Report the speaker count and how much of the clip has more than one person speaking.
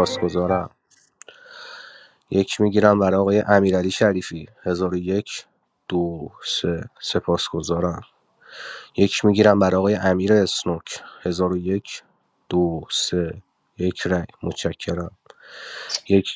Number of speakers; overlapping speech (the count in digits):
1, no overlap